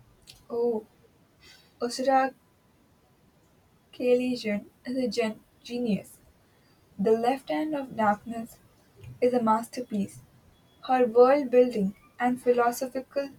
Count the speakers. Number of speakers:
1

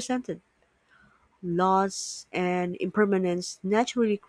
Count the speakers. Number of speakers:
1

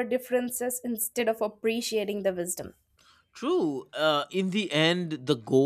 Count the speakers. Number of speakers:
2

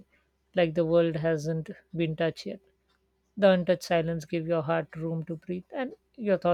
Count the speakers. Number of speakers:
1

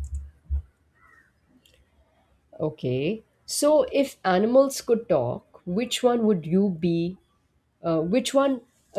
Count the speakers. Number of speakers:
1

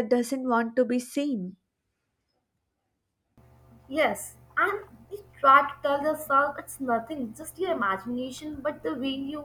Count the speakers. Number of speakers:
2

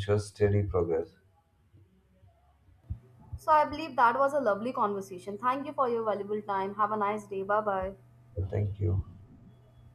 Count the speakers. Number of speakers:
2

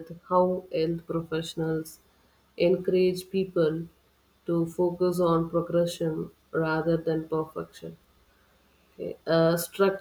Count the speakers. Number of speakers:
1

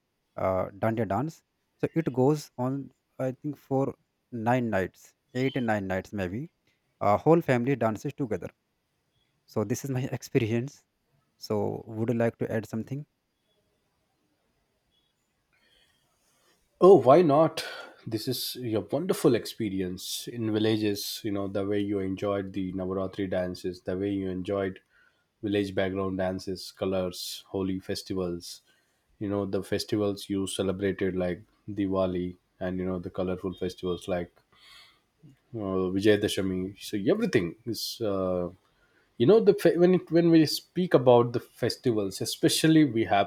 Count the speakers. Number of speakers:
2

